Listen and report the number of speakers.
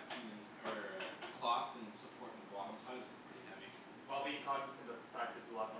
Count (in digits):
2